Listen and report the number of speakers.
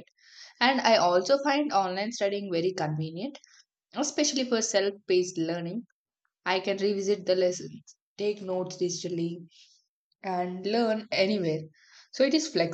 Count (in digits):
1